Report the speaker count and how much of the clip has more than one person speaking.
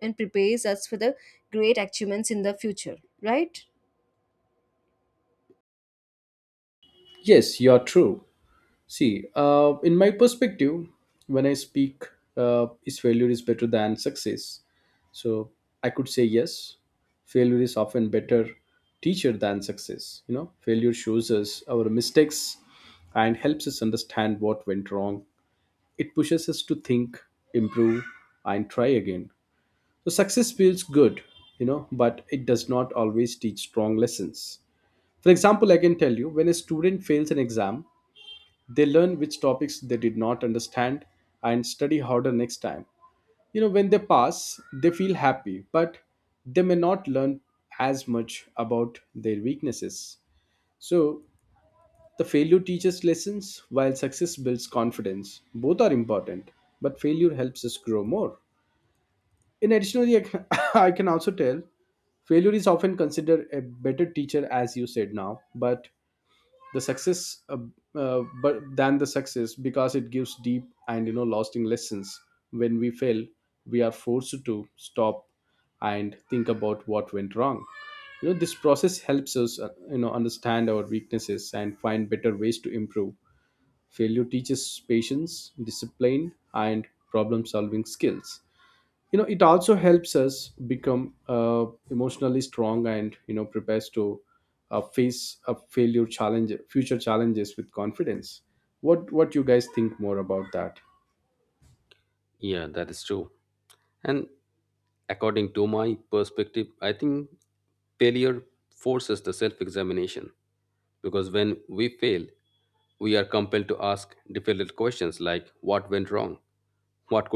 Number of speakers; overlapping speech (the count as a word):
three, no overlap